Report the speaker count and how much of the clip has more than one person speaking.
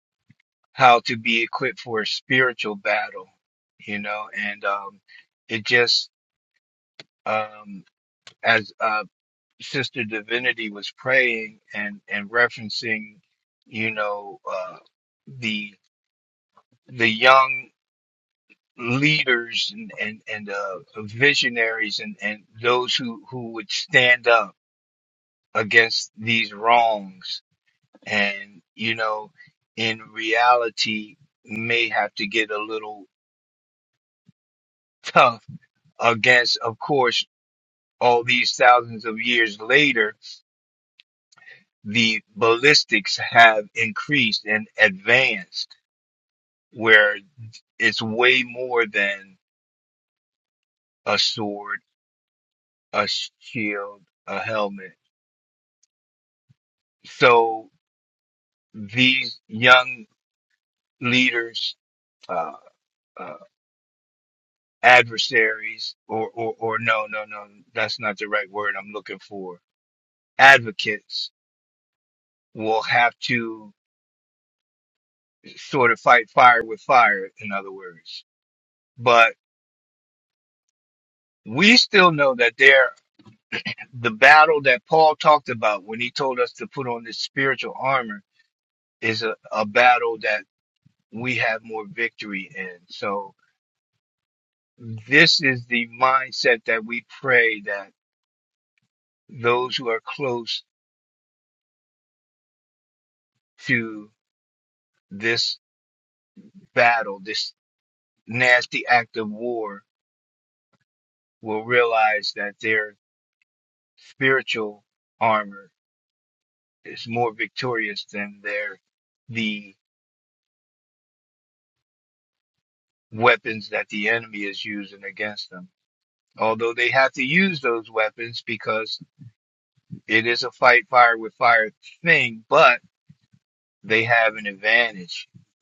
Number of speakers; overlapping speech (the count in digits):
1, no overlap